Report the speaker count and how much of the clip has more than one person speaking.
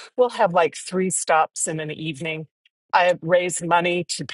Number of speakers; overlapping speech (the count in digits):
1, no overlap